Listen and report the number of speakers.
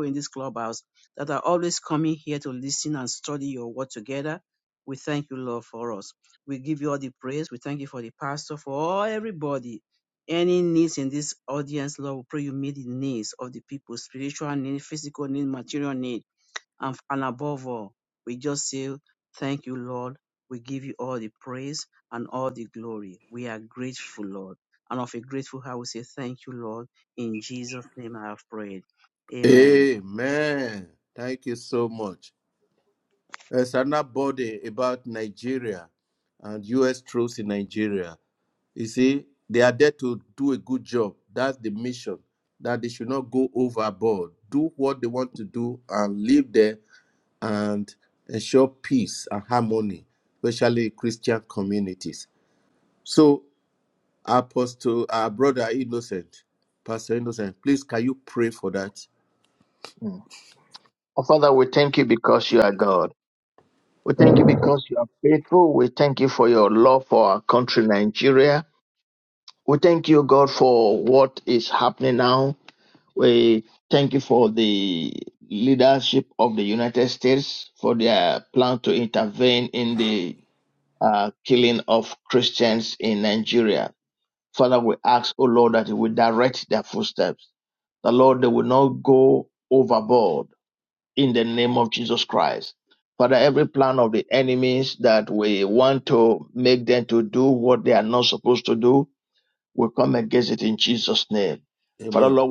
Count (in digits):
3